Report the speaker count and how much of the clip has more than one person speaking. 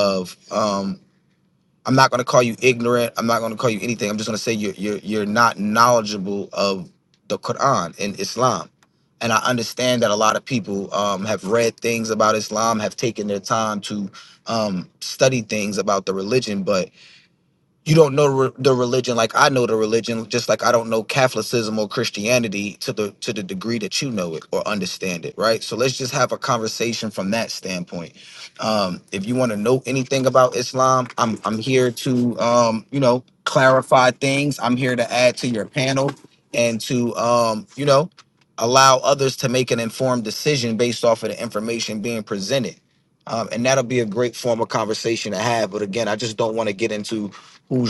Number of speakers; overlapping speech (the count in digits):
1, no overlap